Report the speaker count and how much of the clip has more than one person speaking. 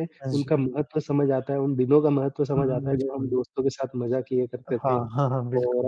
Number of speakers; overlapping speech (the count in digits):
2, about 30%